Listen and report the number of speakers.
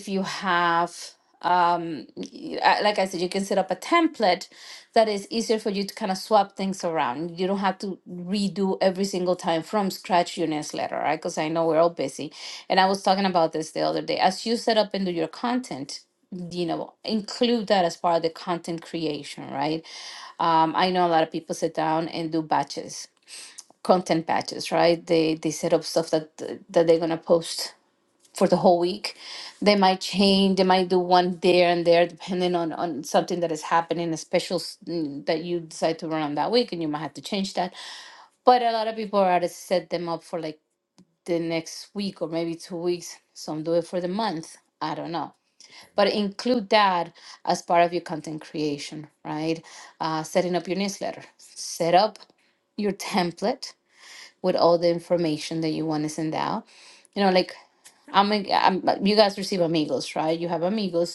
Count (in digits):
1